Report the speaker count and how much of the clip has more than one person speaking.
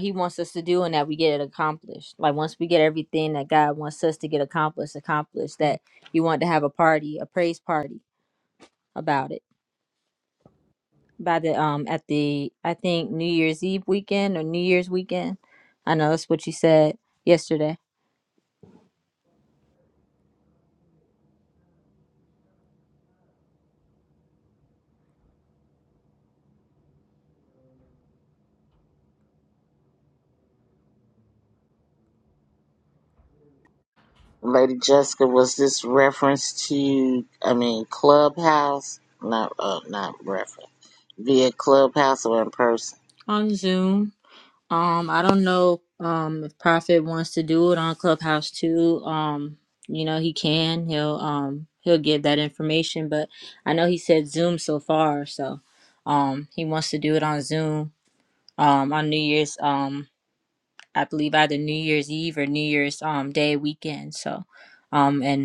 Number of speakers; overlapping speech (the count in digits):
2, no overlap